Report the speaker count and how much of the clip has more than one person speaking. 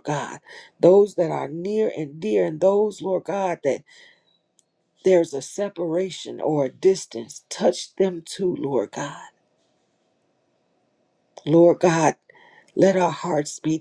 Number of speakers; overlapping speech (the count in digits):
1, no overlap